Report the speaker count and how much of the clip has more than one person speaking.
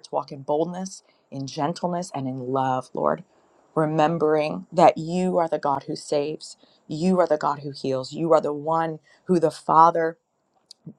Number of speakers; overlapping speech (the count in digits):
1, no overlap